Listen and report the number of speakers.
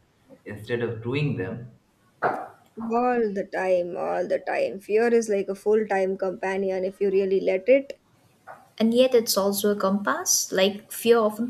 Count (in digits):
3